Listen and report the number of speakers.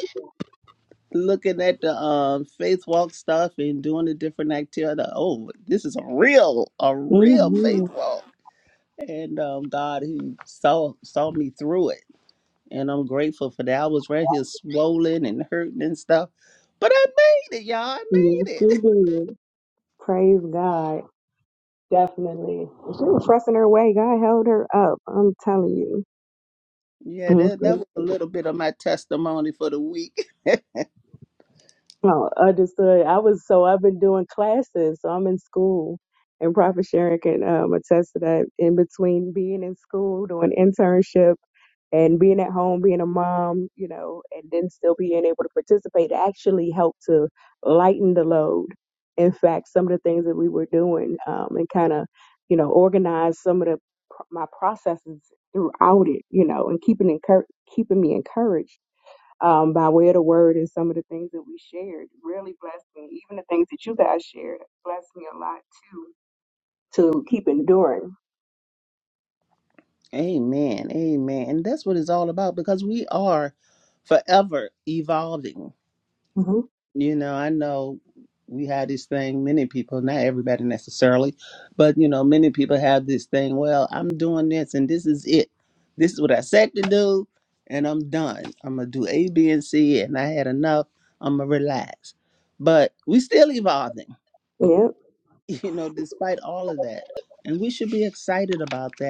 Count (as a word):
two